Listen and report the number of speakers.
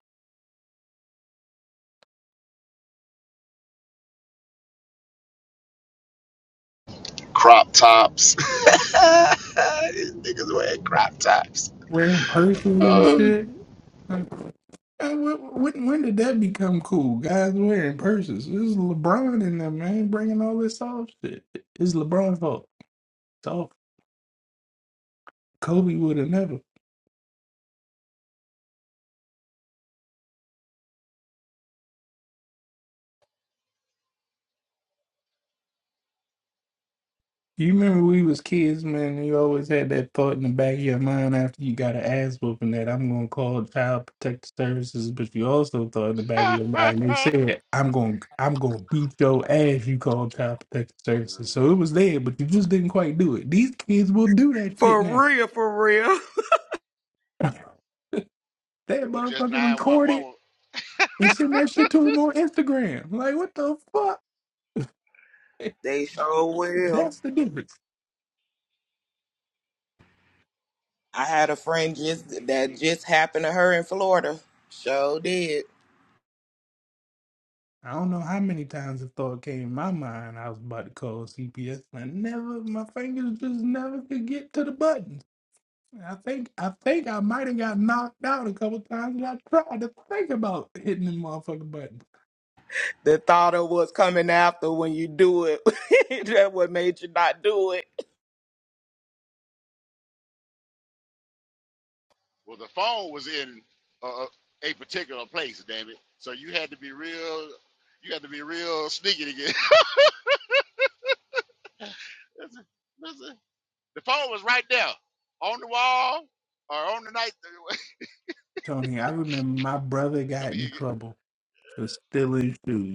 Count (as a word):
four